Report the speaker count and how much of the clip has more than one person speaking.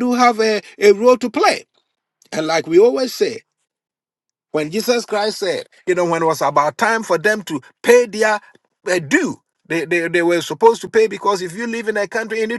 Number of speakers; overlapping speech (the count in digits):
1, no overlap